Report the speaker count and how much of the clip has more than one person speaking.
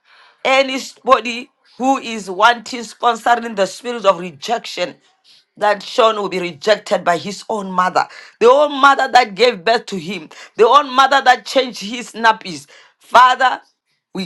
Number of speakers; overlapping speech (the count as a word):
one, no overlap